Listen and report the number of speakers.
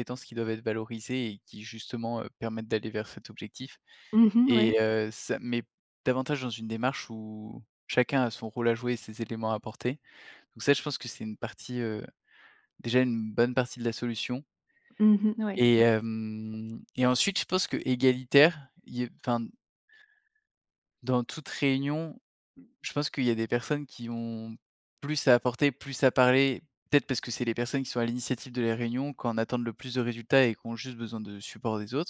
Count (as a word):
two